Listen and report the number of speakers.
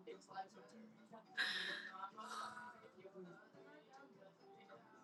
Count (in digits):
0